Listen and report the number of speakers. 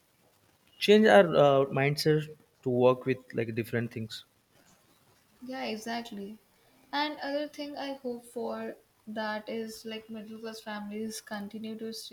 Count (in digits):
2